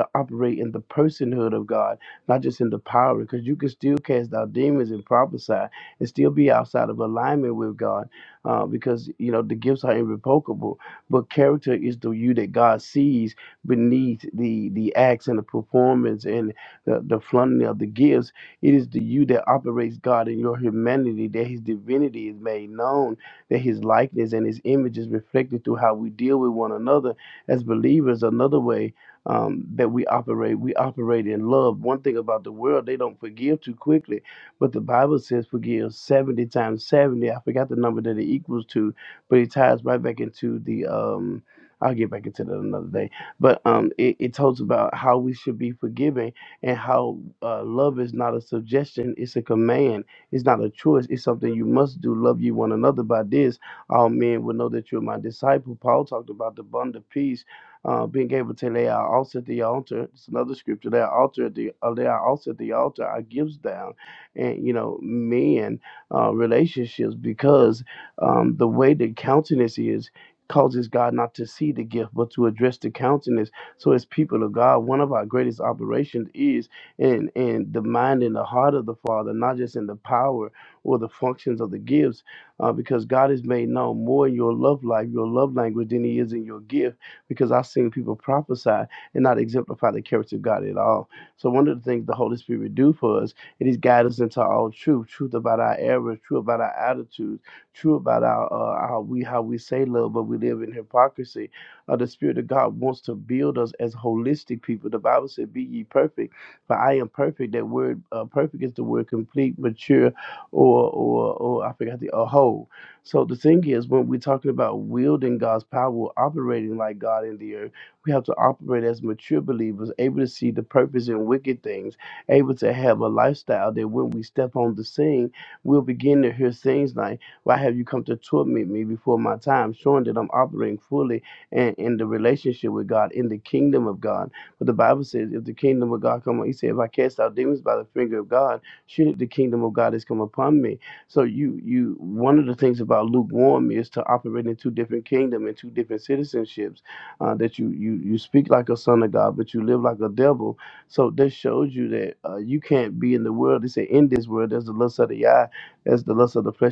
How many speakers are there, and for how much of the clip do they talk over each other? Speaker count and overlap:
1, no overlap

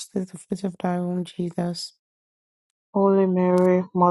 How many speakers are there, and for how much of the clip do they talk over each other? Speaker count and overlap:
2, no overlap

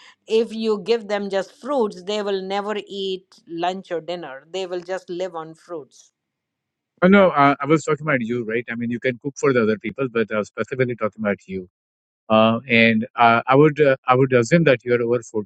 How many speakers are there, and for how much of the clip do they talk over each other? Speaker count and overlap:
2, no overlap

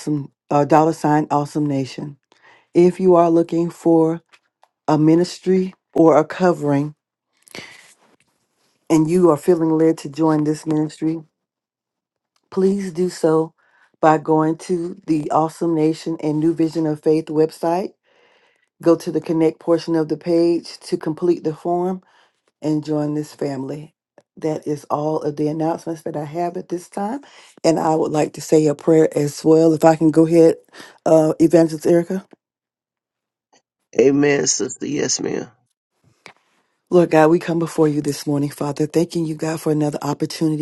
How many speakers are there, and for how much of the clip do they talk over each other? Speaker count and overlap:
2, no overlap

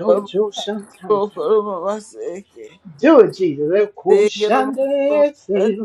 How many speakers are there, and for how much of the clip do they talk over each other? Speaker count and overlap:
2, about 24%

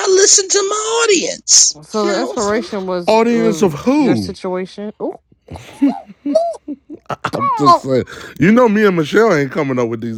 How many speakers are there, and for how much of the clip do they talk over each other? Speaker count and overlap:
3, about 23%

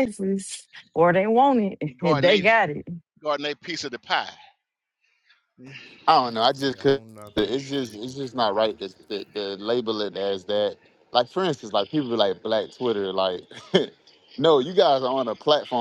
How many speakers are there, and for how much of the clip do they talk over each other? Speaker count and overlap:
3, about 4%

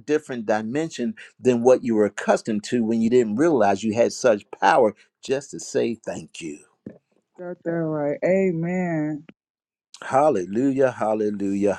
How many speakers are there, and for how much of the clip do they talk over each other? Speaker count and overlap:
2, no overlap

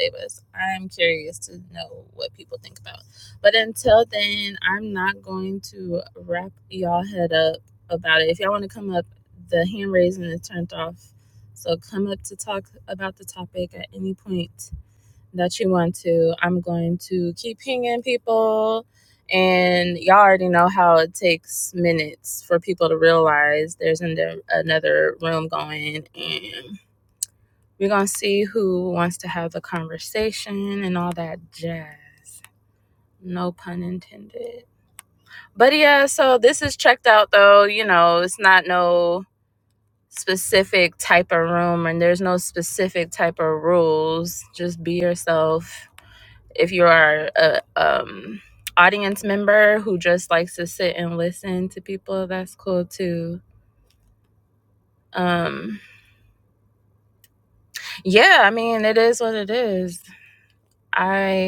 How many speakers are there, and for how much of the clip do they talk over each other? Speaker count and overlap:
1, no overlap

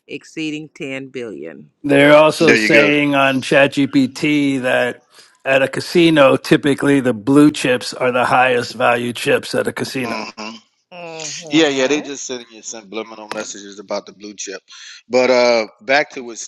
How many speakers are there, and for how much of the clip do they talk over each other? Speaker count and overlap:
3, about 8%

